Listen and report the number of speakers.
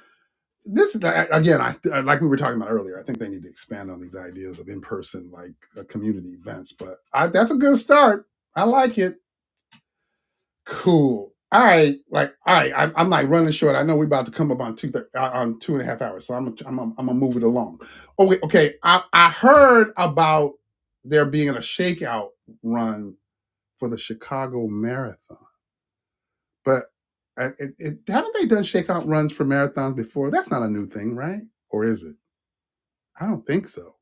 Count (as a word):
one